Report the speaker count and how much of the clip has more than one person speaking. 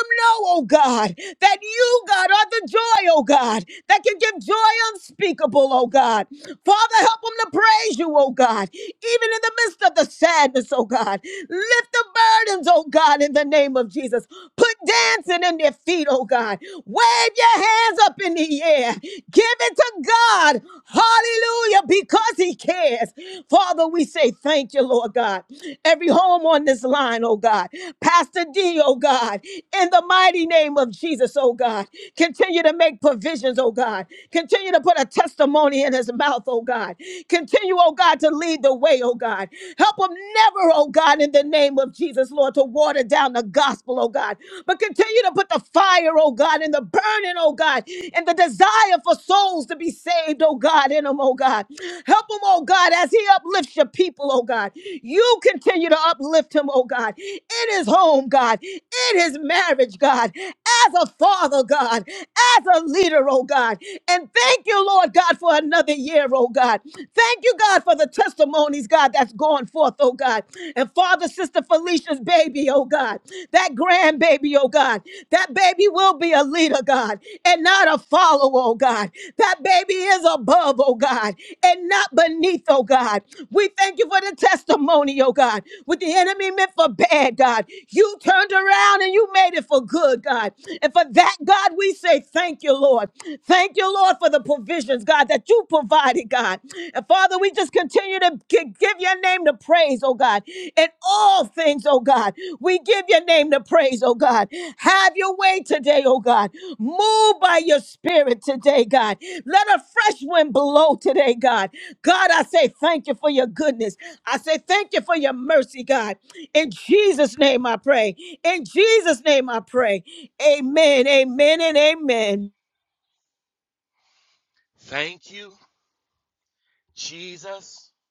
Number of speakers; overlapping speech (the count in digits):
2, no overlap